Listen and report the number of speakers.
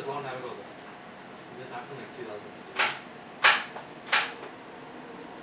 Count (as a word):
one